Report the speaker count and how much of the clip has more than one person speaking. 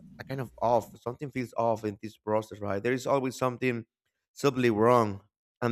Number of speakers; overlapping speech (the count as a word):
one, no overlap